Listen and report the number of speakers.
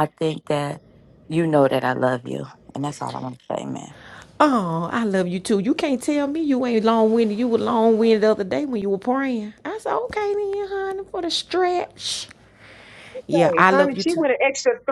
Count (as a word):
three